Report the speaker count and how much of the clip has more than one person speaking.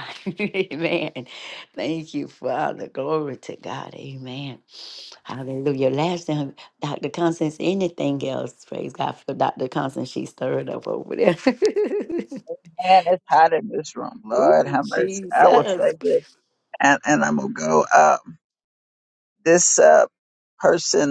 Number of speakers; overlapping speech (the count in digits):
2, about 7%